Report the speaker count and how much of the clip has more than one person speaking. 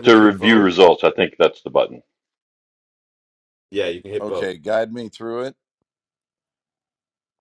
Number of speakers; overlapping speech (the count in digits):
3, about 13%